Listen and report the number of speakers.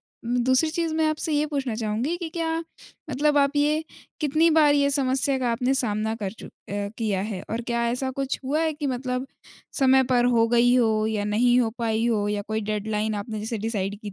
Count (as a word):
one